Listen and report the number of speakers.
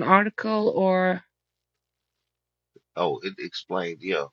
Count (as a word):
two